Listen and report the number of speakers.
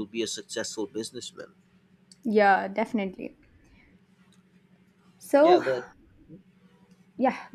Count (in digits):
2